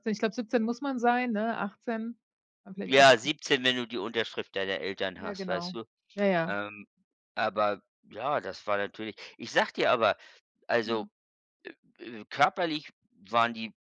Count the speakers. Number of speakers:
two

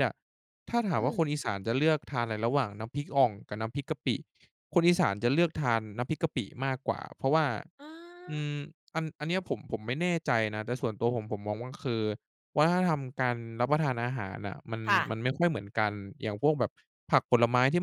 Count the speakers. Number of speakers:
two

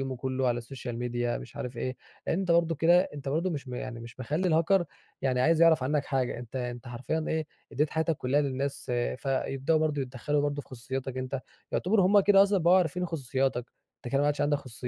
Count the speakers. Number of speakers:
one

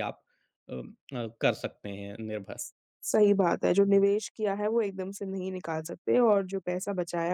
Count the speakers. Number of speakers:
two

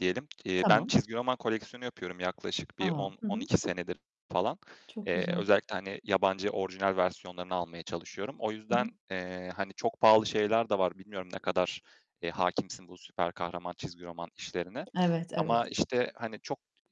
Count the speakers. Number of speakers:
two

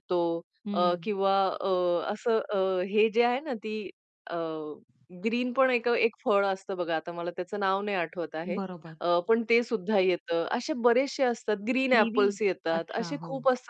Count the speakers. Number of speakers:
two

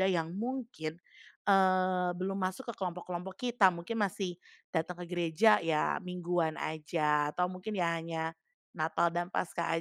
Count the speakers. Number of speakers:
one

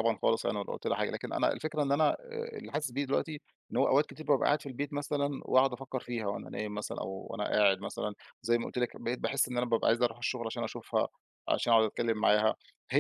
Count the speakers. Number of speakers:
one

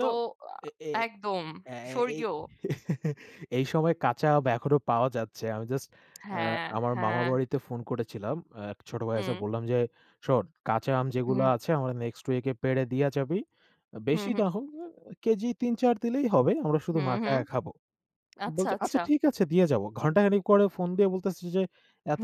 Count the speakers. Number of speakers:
two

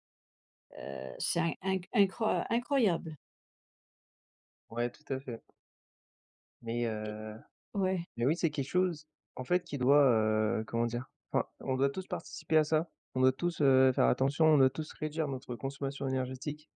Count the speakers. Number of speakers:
two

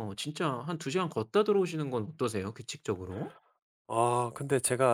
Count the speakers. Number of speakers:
two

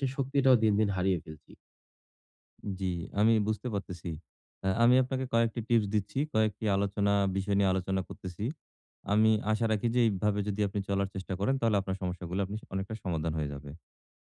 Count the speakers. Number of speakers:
two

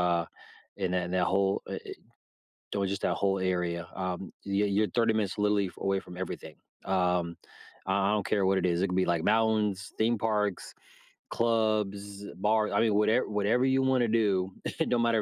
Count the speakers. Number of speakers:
one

